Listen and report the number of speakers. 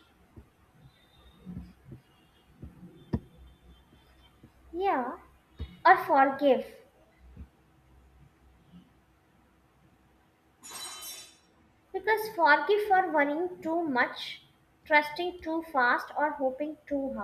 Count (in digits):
1